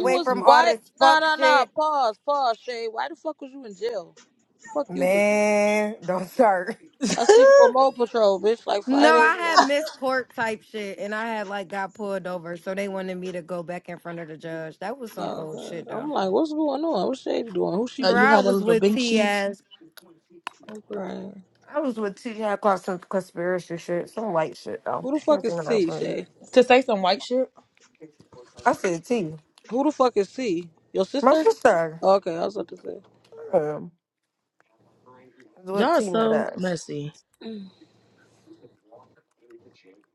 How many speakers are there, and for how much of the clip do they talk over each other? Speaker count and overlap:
3, about 18%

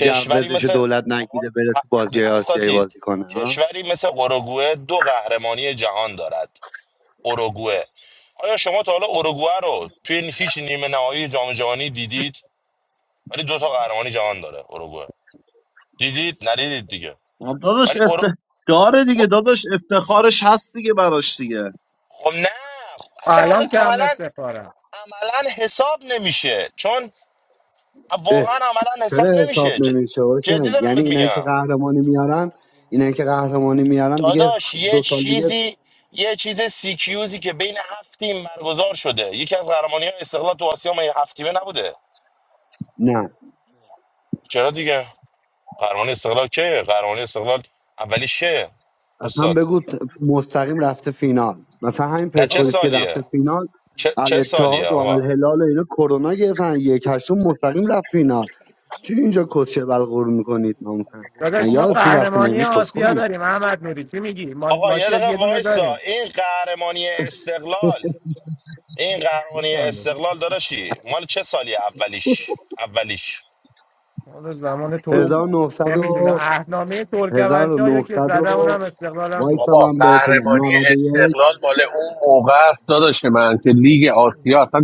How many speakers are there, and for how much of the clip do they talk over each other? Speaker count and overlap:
5, about 20%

